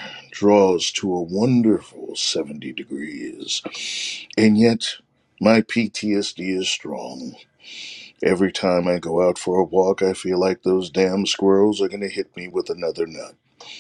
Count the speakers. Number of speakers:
1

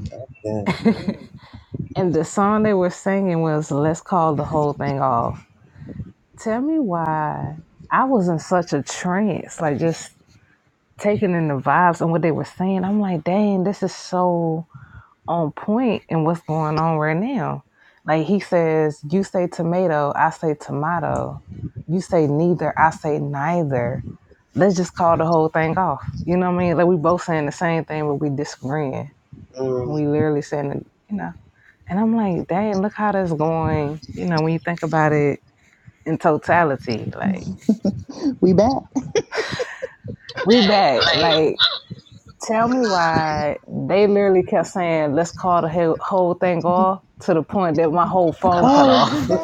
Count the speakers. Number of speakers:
3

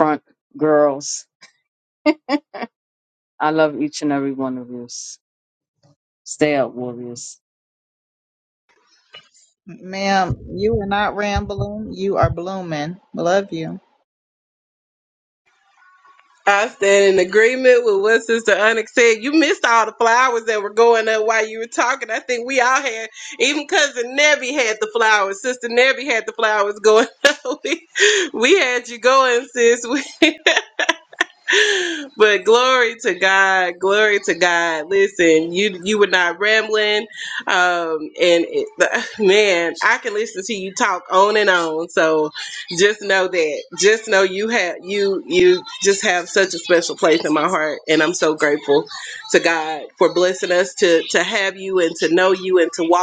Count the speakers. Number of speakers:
3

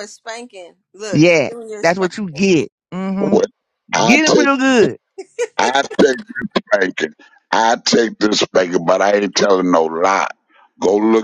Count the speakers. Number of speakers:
3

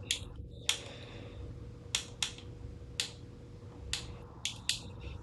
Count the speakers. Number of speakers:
0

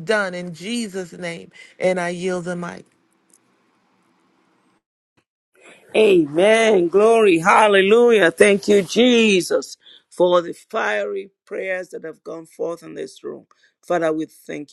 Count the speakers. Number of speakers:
2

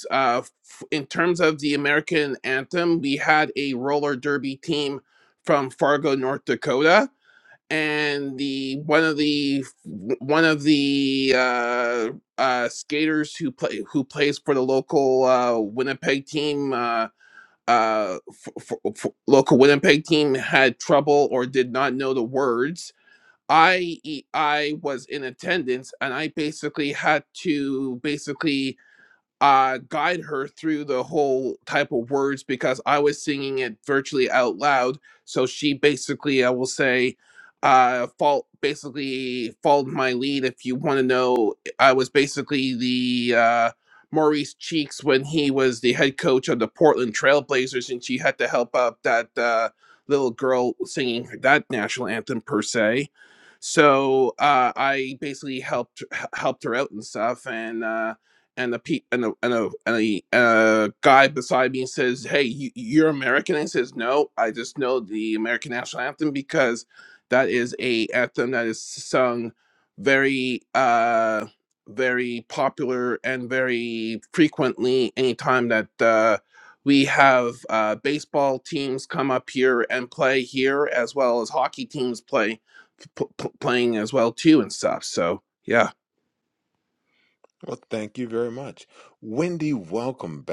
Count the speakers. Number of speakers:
2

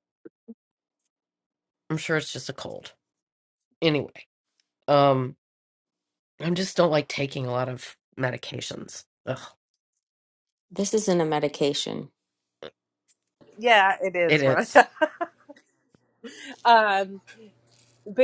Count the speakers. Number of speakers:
3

